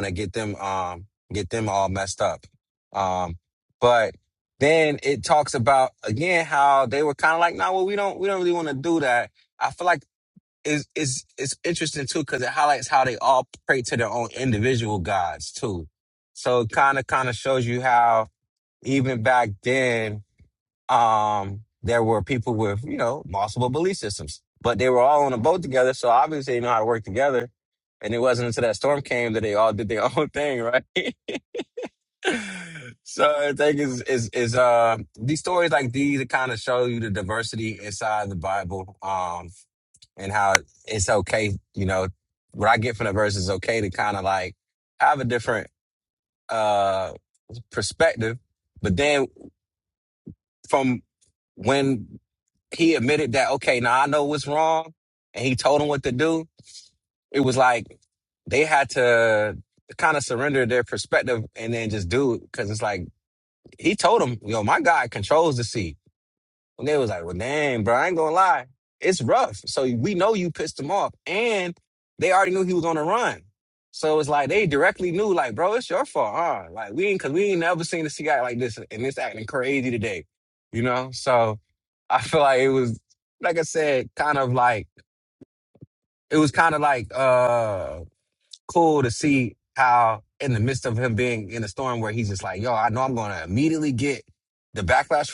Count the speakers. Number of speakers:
1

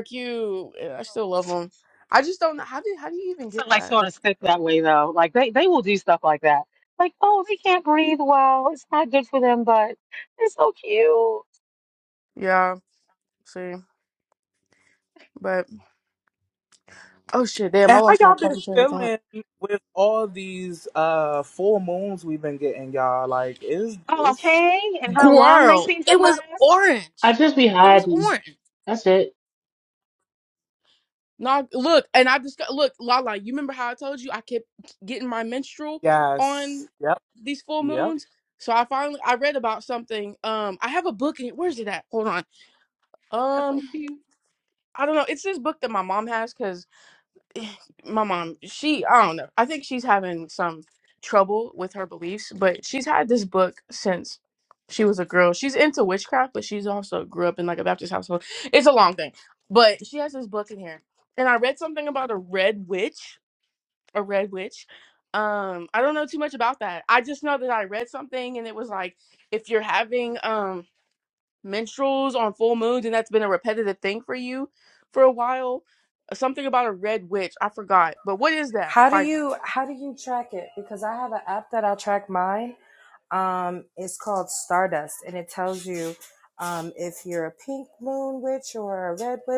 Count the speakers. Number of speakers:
5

